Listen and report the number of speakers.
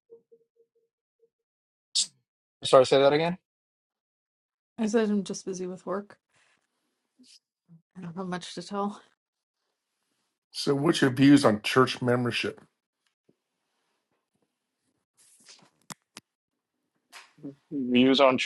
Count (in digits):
3